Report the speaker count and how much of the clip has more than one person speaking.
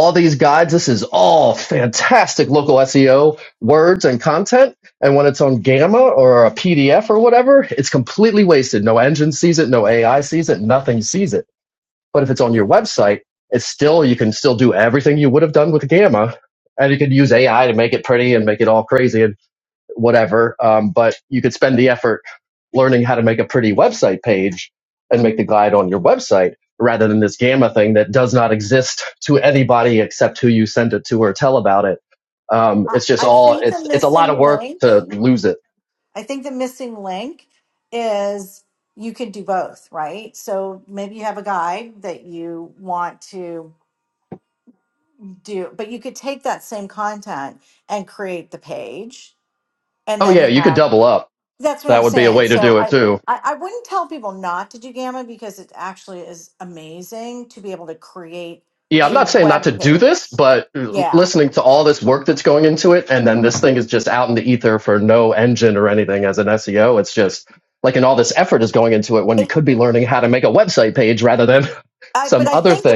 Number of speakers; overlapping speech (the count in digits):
2, about 8%